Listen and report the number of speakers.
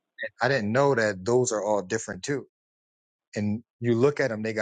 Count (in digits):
1